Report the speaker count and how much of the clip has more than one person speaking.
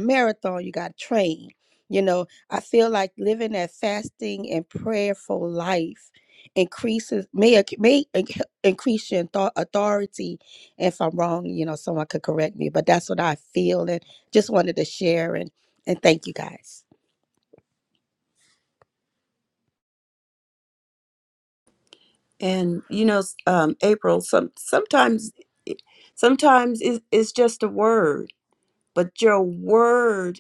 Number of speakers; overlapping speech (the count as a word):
two, no overlap